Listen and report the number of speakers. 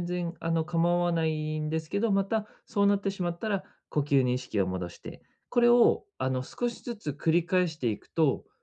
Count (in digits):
1